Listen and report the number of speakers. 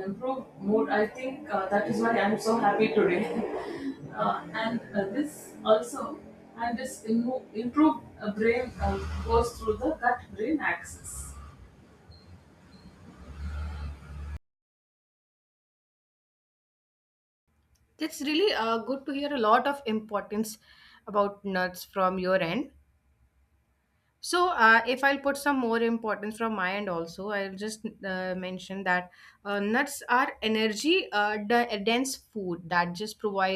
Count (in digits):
2